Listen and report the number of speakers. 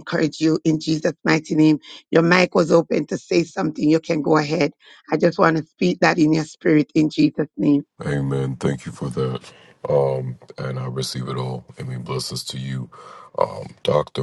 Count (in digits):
2